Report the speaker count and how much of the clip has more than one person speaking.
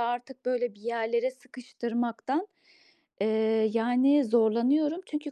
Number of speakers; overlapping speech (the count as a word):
one, no overlap